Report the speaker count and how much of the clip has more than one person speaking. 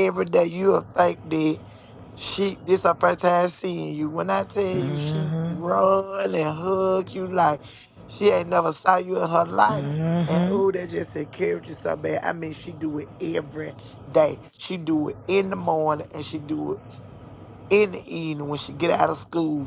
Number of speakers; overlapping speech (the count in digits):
2, about 7%